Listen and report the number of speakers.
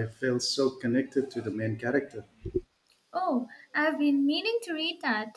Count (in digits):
2